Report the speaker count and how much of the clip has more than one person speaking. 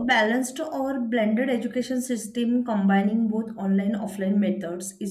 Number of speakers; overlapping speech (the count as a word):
one, no overlap